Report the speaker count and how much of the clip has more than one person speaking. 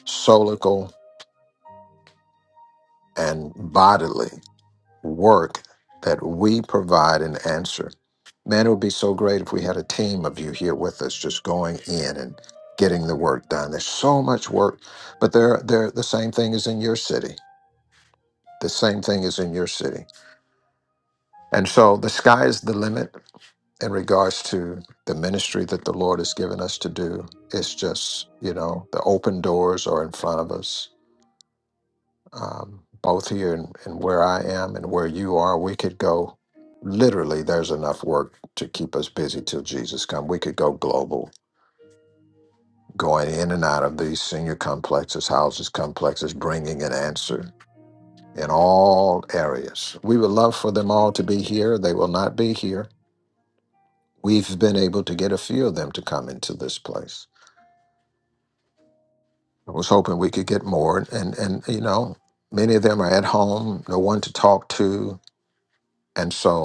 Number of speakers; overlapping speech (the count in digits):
1, no overlap